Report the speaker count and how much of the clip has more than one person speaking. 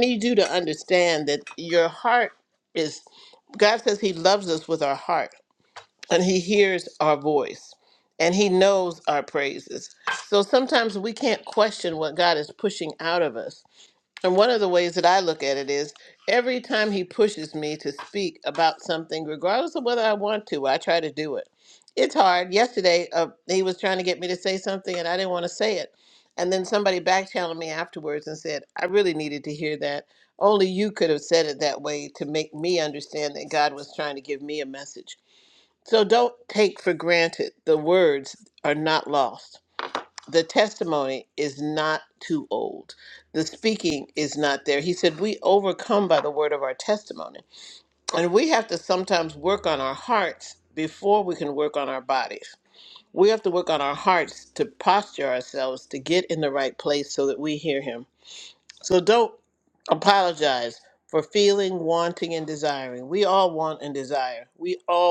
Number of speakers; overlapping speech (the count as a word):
one, no overlap